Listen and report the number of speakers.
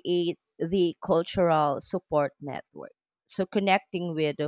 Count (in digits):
1